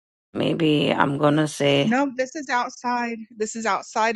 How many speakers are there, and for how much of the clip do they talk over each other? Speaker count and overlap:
2, about 2%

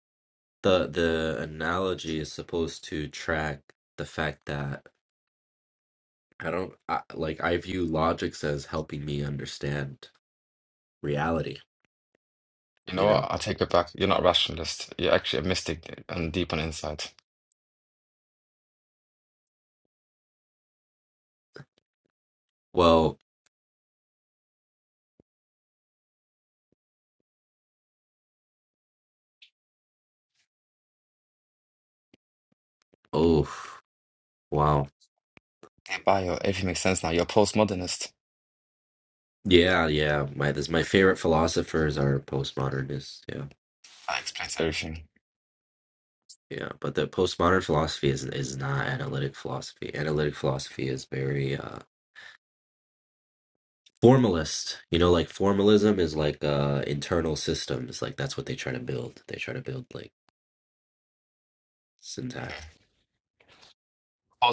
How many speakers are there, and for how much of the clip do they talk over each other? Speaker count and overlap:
2, under 1%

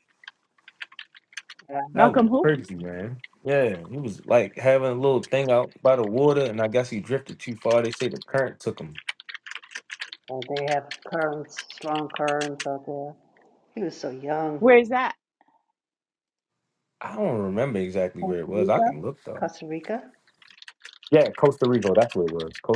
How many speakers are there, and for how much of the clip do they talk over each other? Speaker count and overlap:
3, about 6%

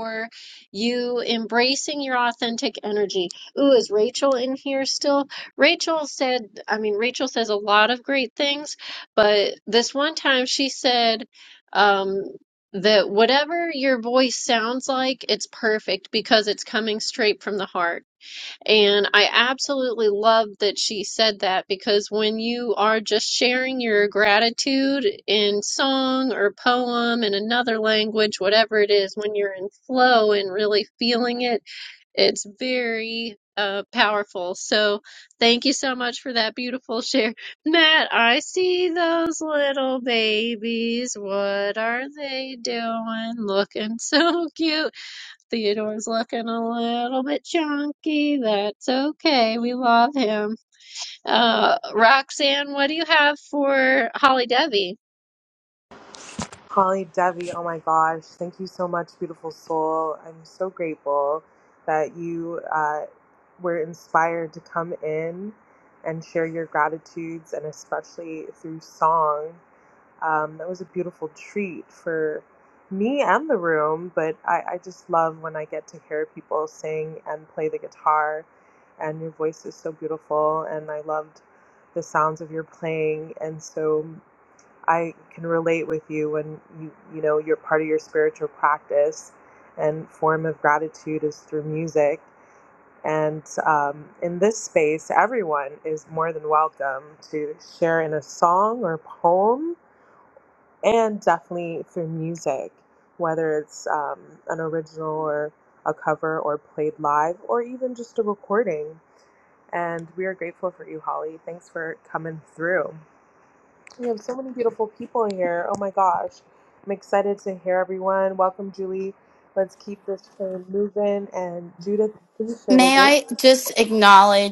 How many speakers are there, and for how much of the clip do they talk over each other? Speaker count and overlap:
3, about 1%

